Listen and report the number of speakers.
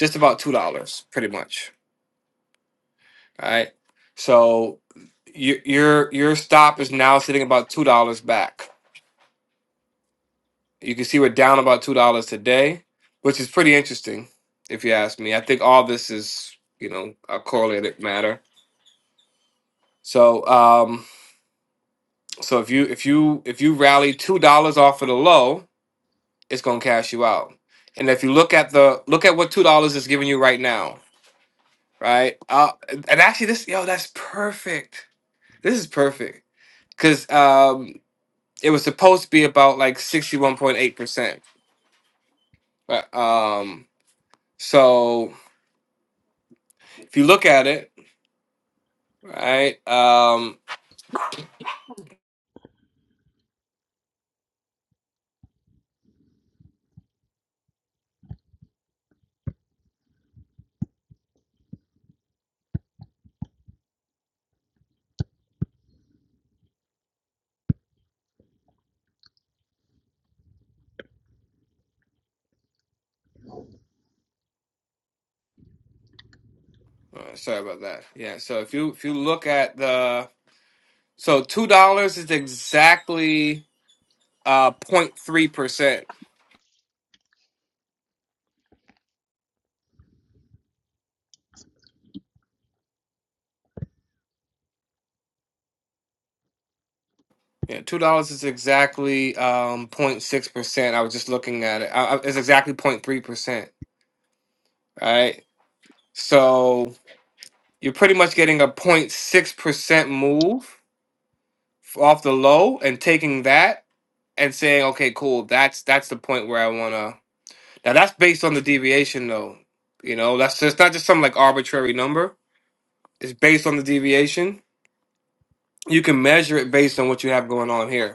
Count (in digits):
1